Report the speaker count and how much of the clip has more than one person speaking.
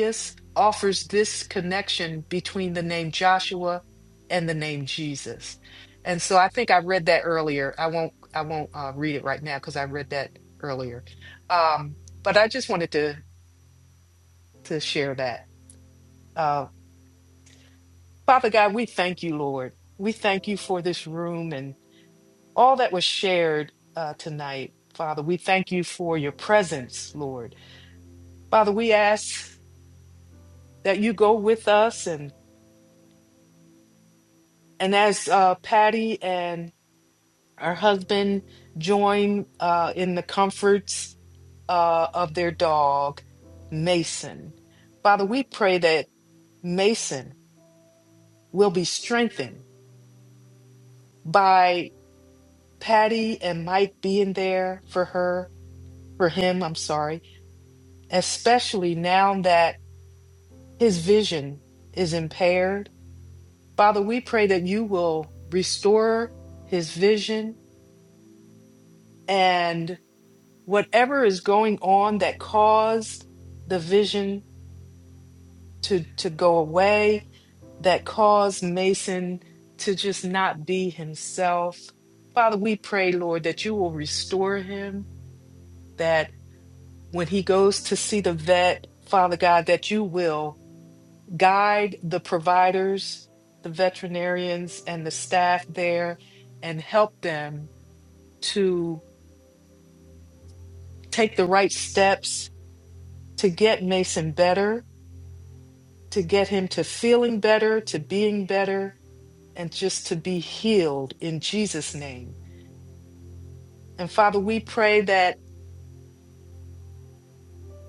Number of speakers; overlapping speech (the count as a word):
one, no overlap